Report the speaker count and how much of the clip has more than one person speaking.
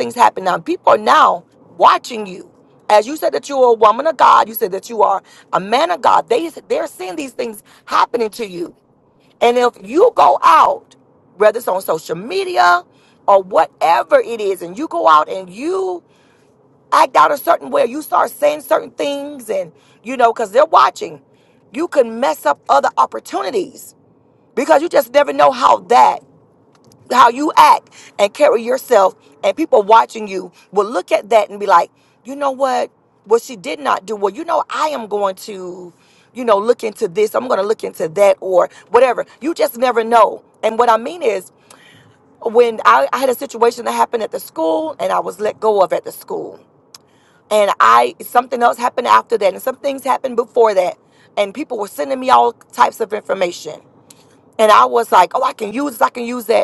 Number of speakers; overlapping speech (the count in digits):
1, no overlap